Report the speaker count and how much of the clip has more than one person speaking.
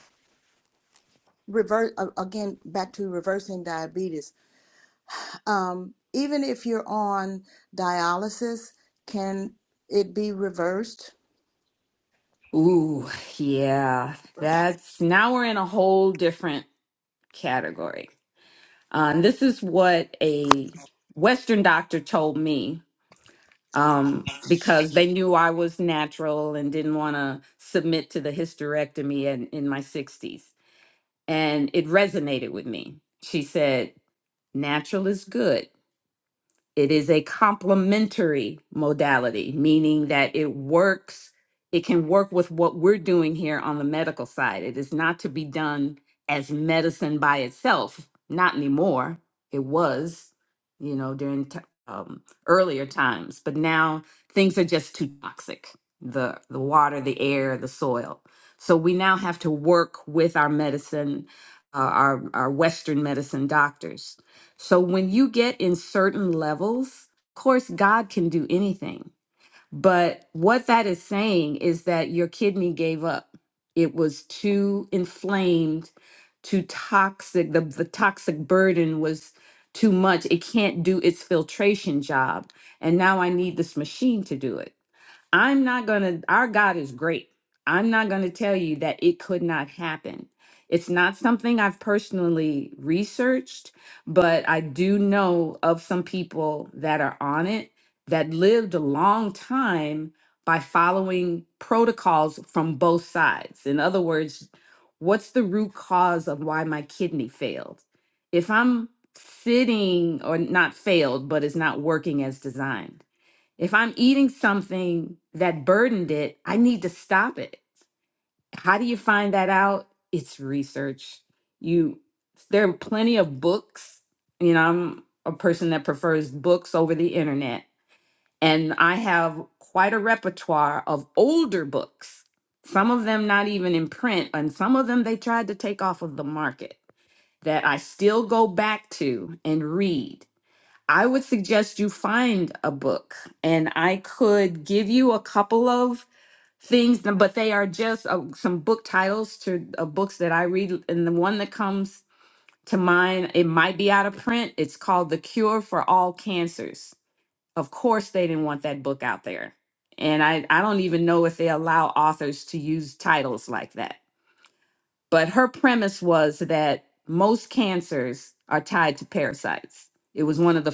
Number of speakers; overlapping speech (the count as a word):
two, no overlap